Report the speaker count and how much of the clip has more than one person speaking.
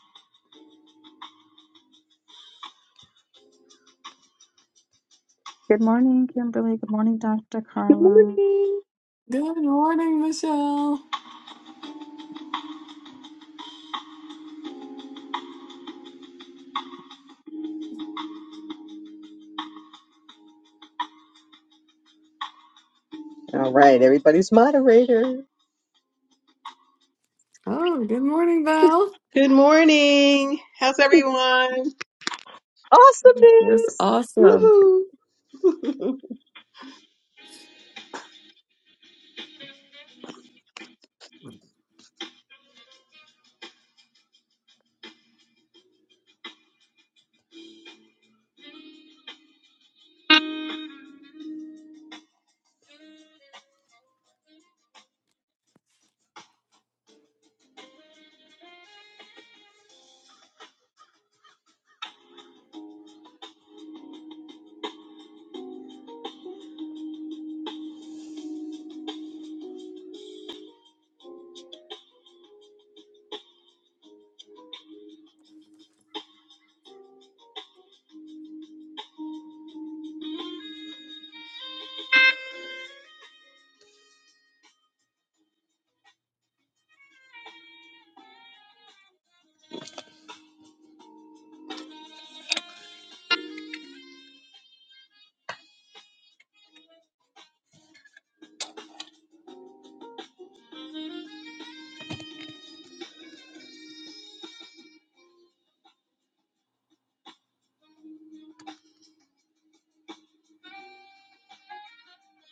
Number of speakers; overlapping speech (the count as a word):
four, about 1%